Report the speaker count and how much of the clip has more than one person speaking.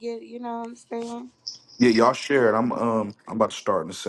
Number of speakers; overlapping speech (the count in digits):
2, no overlap